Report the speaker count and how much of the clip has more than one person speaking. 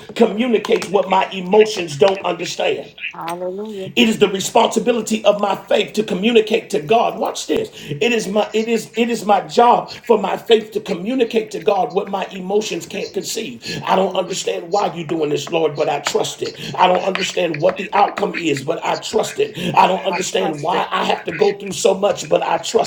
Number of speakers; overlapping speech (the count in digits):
2, about 5%